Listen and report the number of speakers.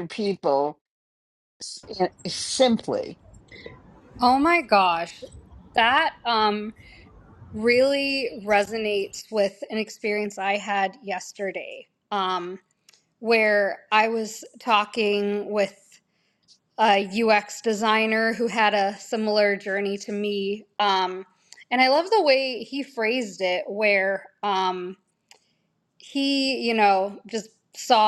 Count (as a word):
two